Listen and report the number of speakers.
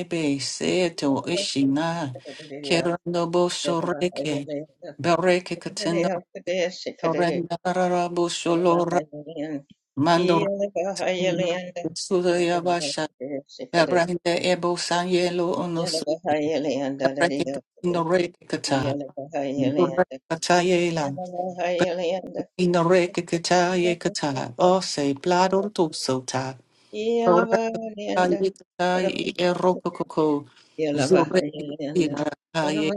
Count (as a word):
two